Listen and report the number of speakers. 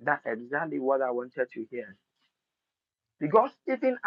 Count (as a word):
one